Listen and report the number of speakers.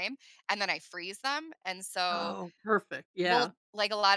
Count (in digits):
2